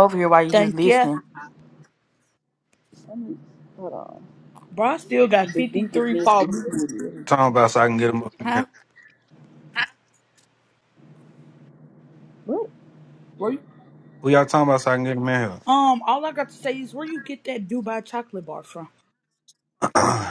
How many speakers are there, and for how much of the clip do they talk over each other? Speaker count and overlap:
four, about 10%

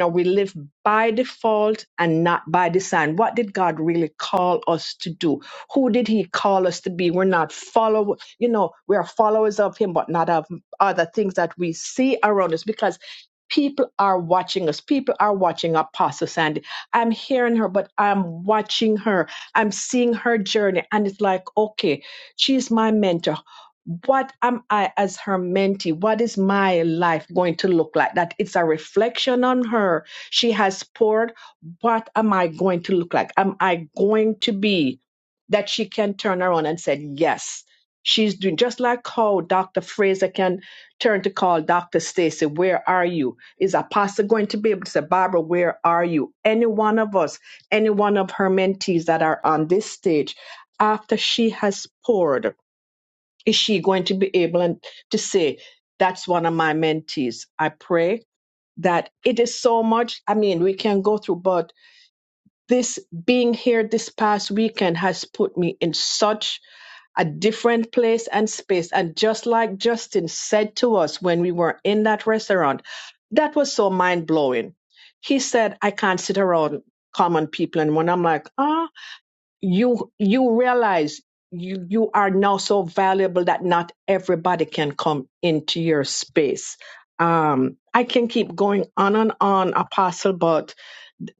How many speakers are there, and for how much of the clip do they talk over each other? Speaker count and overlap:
one, no overlap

